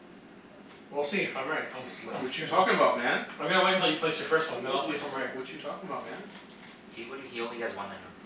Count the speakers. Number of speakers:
3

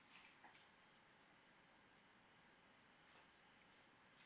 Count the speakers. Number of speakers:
0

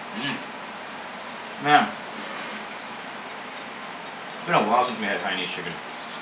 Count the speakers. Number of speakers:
1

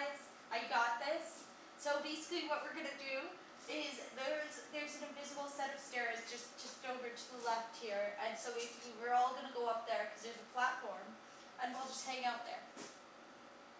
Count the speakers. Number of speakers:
1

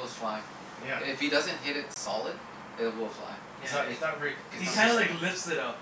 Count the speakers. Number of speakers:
3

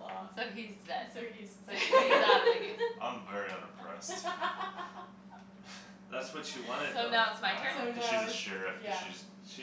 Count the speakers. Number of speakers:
4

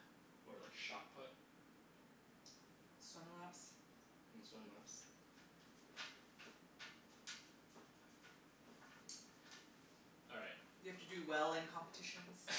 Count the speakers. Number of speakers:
2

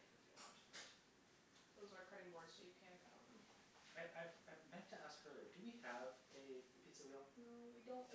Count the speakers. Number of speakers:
2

